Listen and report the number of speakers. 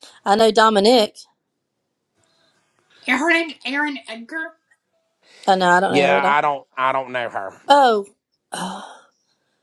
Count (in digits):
3